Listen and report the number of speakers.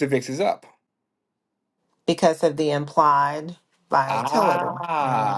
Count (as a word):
two